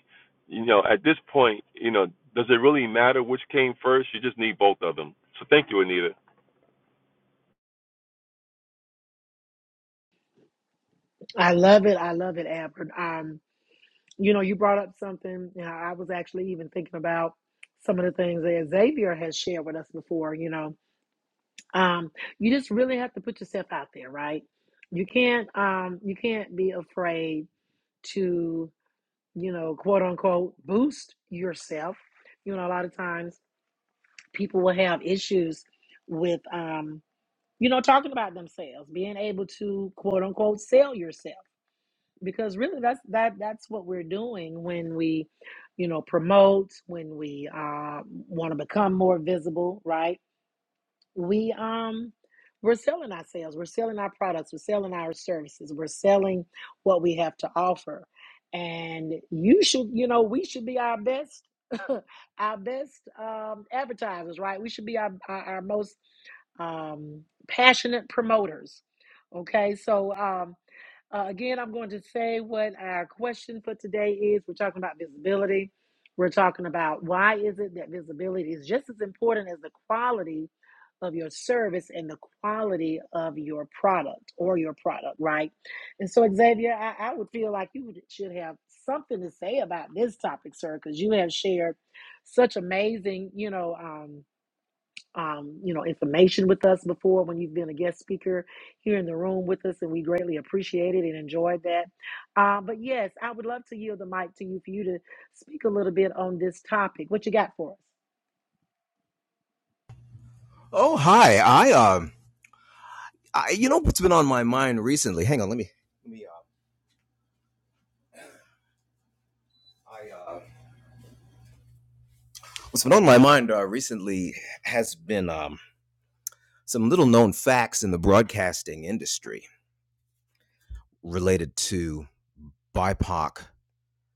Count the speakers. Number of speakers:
three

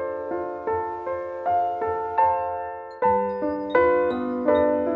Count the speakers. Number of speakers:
zero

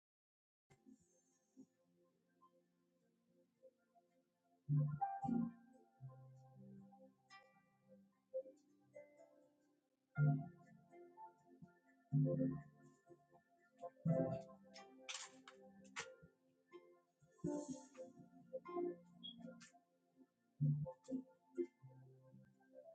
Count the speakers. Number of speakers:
zero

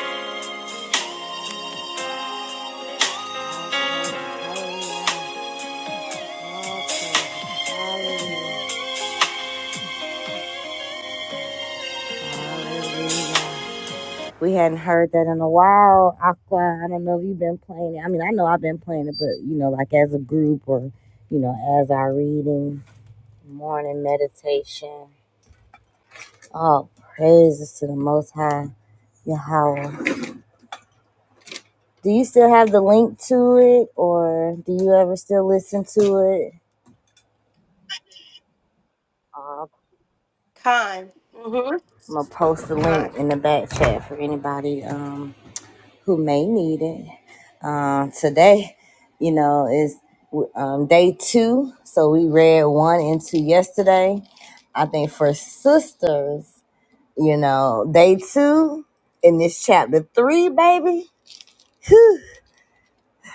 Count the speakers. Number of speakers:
two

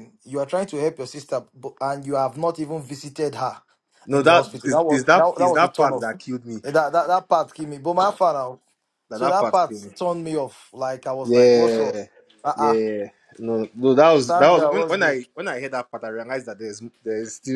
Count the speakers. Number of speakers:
two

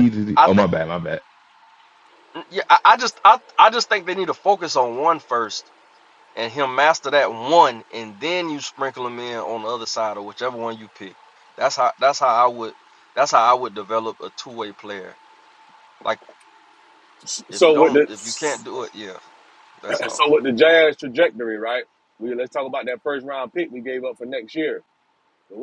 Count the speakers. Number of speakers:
three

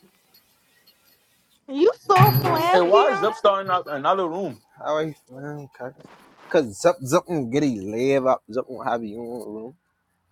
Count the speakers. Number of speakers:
three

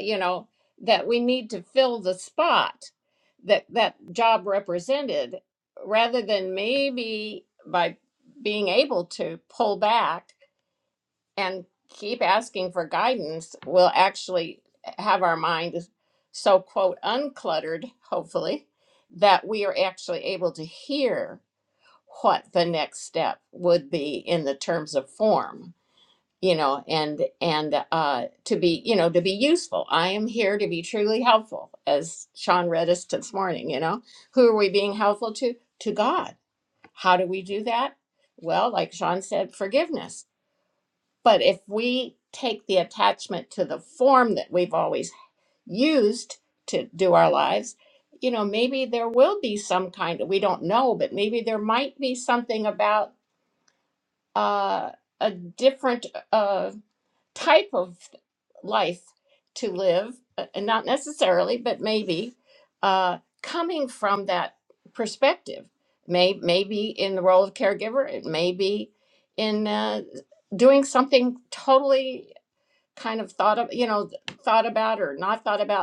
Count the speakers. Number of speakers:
one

